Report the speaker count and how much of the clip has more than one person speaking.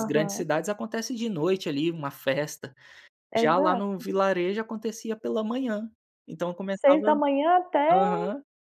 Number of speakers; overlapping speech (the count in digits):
2, about 19%